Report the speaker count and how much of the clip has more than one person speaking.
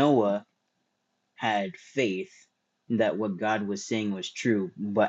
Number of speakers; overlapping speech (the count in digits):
1, no overlap